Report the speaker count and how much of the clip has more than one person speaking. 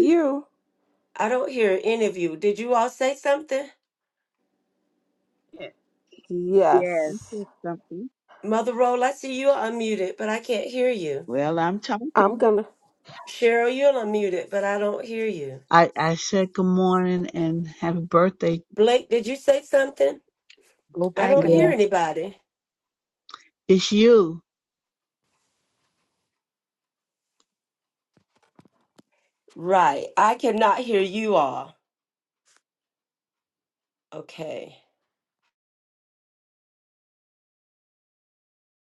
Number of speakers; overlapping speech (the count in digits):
4, about 2%